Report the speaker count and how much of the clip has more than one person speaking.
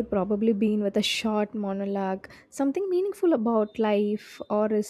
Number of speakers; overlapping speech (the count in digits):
1, no overlap